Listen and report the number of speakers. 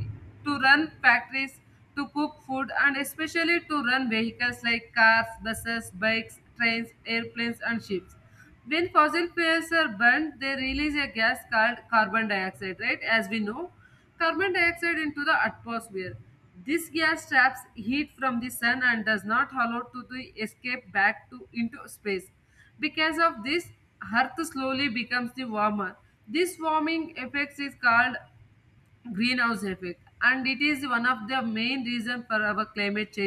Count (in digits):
1